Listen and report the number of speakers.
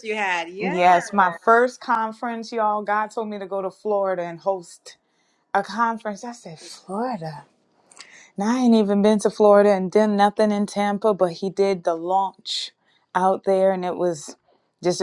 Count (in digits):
2